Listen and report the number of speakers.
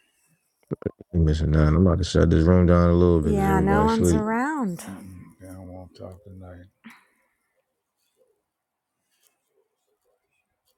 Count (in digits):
3